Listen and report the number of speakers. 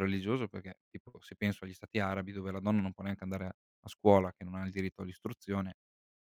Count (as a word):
one